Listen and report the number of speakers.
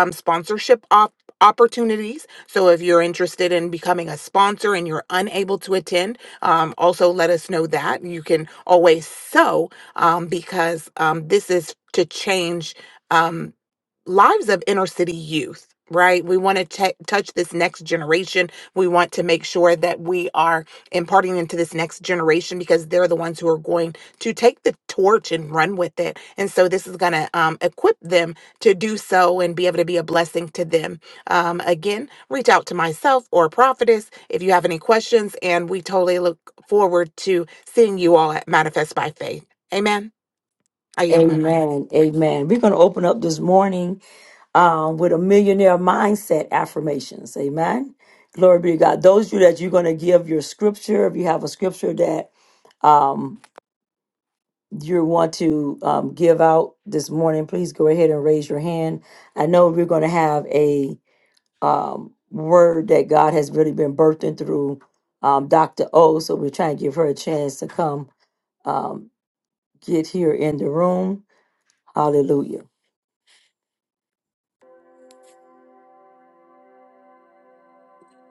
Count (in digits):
2